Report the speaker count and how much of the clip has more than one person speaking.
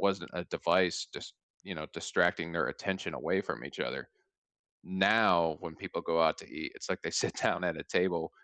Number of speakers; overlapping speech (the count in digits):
1, no overlap